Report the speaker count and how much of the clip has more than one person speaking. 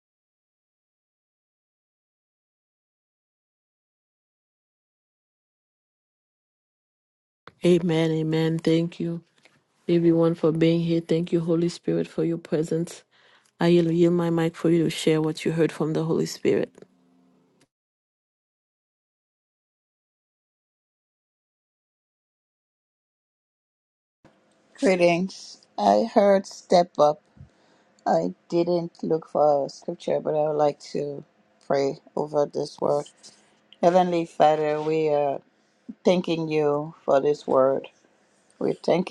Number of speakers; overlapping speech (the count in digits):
2, no overlap